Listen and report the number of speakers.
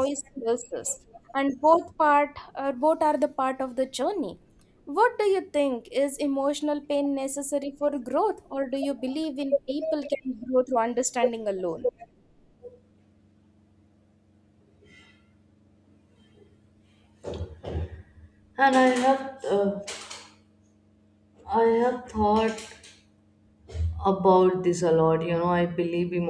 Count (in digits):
2